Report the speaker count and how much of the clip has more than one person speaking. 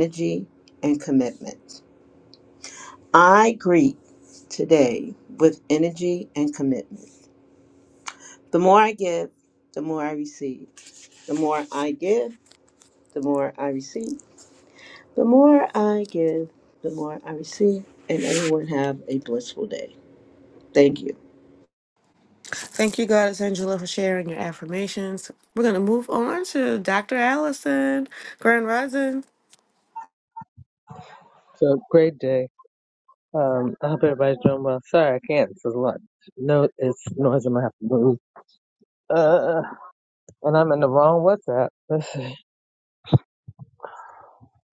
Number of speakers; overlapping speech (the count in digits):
3, no overlap